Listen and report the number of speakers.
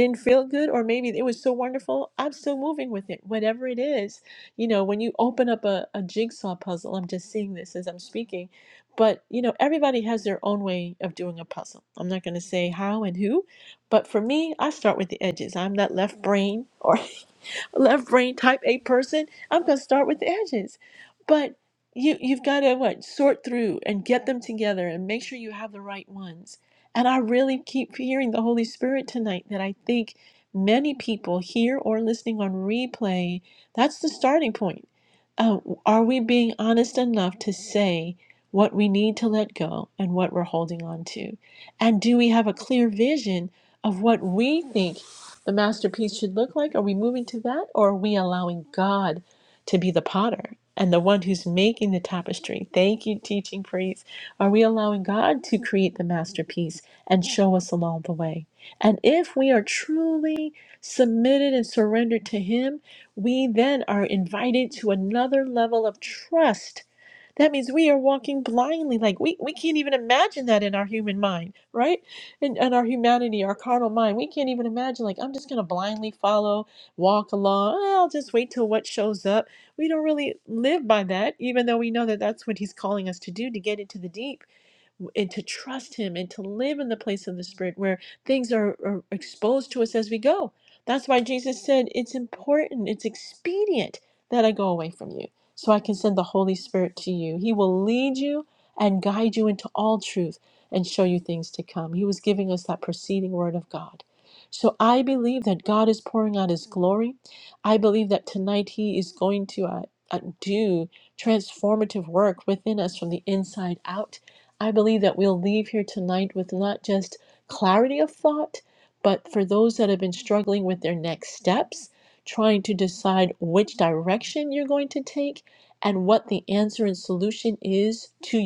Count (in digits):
1